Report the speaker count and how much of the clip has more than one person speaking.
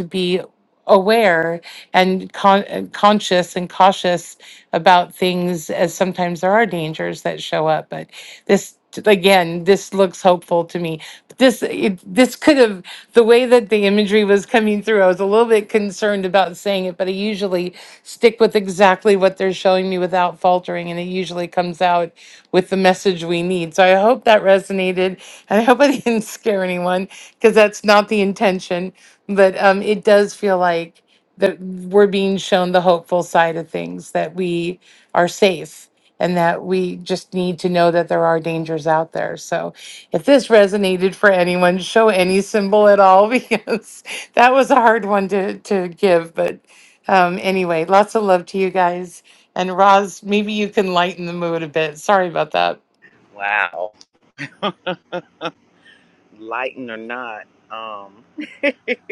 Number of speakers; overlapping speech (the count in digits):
2, no overlap